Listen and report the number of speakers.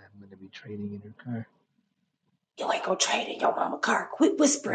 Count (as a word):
two